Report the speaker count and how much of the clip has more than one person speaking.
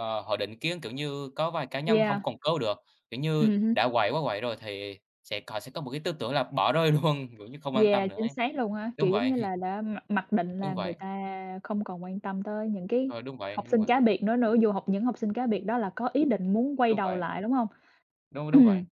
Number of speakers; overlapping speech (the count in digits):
2, about 14%